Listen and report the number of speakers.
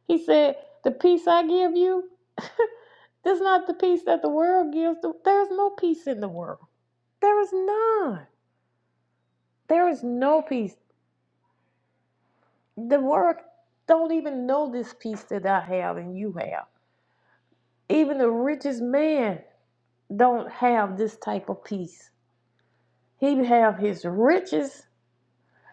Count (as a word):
one